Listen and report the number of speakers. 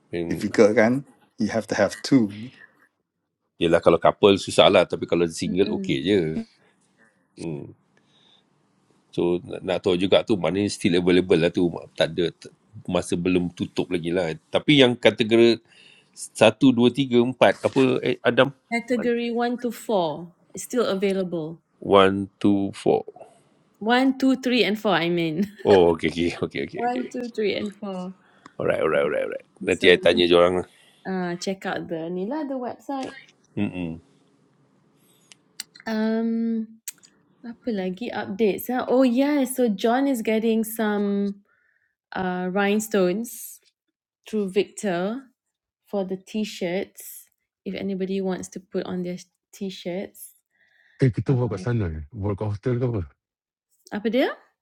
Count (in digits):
4